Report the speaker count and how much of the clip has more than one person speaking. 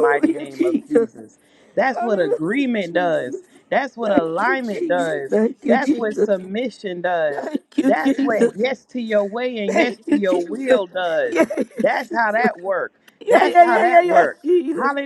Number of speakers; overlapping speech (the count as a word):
two, about 50%